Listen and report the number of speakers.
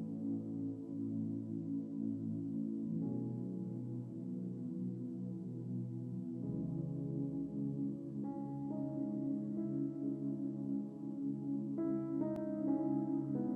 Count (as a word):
zero